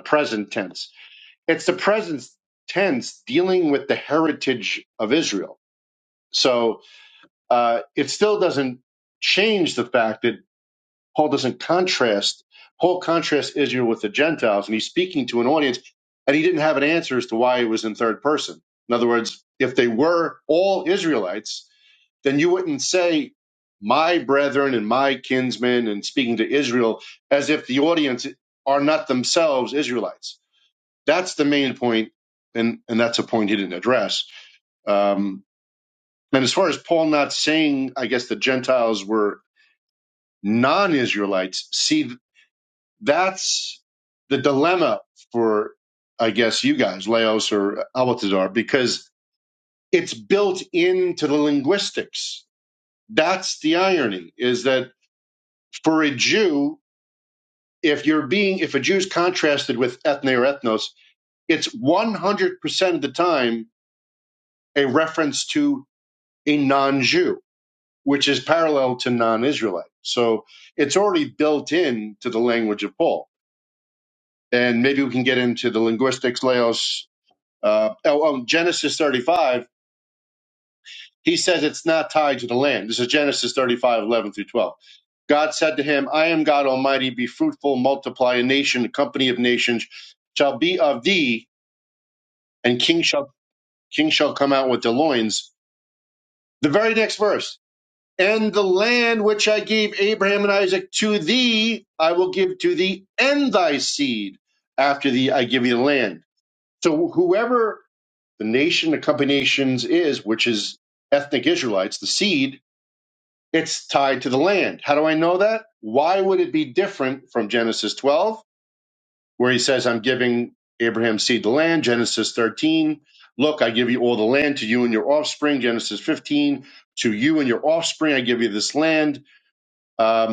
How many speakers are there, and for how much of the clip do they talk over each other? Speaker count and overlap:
one, no overlap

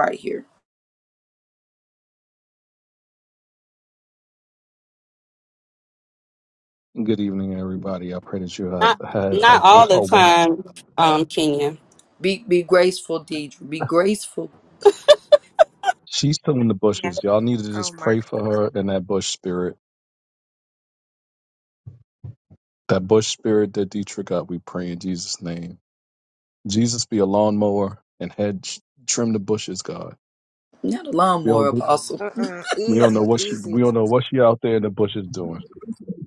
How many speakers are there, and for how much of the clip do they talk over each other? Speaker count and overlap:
four, about 7%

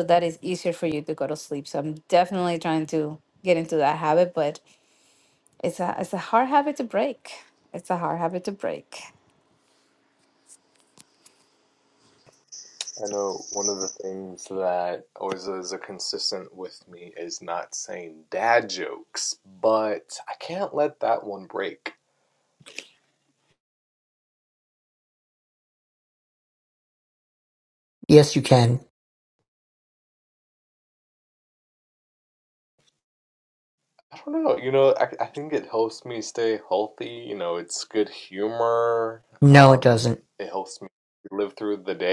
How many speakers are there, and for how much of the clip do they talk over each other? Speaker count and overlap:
three, about 1%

